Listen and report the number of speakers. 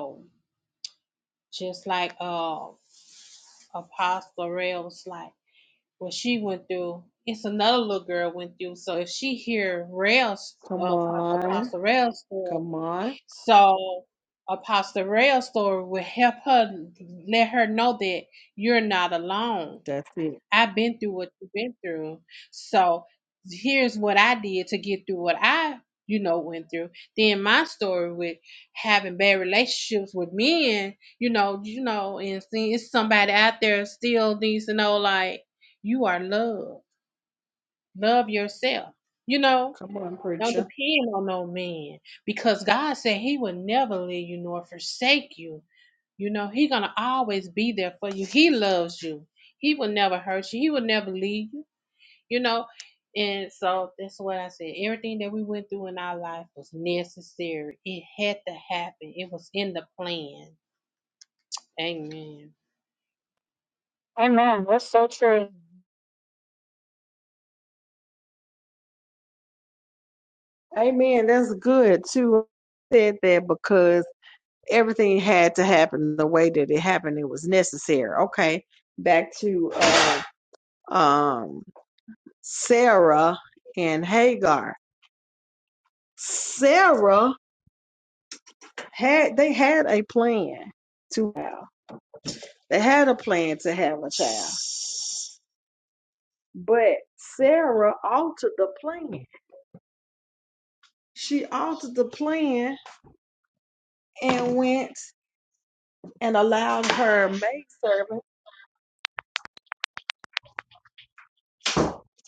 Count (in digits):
3